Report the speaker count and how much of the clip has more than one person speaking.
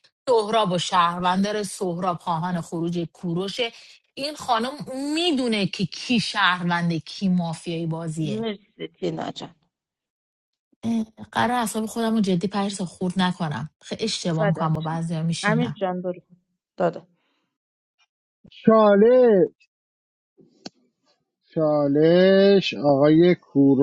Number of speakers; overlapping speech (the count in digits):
3, about 4%